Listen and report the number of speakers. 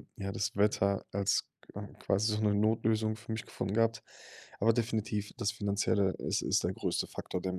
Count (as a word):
one